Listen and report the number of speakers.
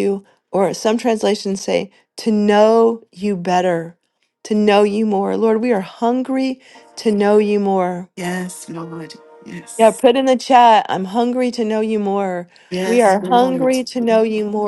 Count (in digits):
2